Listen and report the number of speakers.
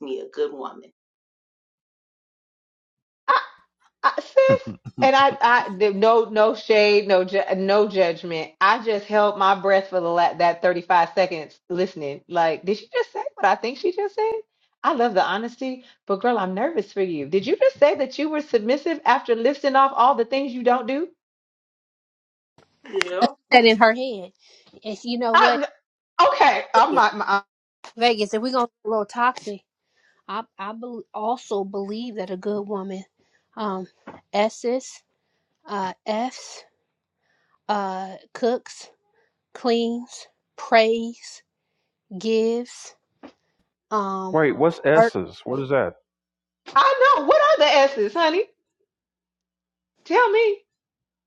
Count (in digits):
4